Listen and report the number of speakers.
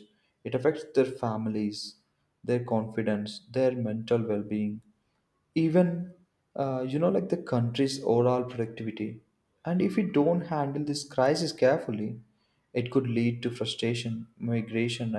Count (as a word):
one